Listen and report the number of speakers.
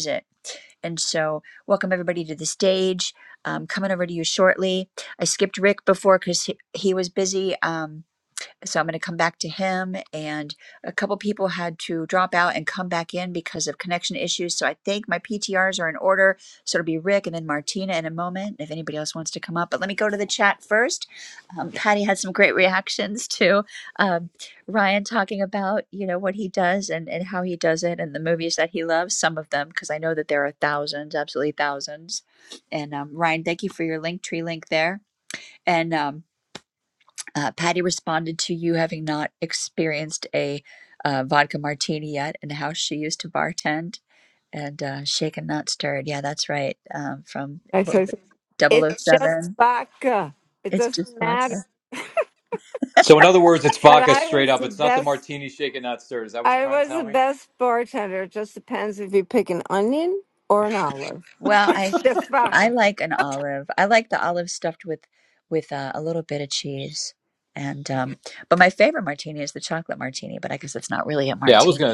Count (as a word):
three